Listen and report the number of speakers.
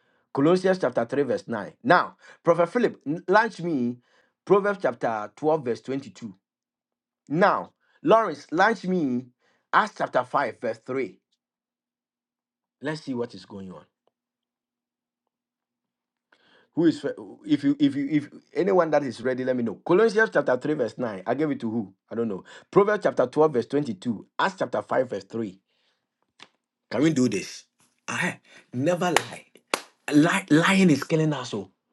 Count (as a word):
one